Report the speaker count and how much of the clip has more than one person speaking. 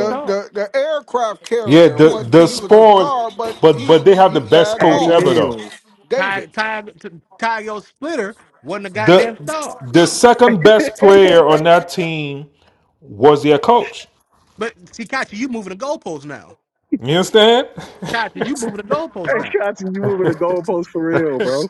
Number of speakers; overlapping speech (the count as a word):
four, about 22%